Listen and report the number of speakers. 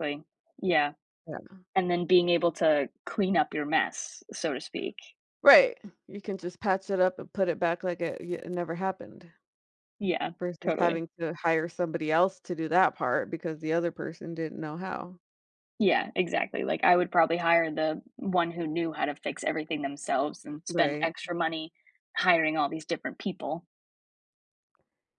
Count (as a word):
two